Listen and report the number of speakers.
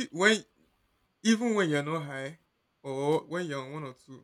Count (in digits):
1